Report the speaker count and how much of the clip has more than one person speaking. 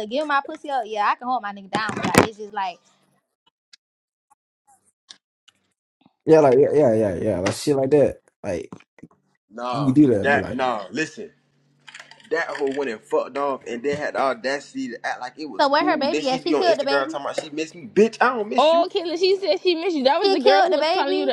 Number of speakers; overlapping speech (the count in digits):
4, about 18%